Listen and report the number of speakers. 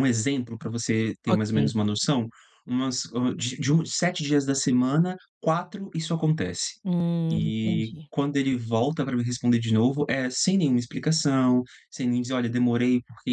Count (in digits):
2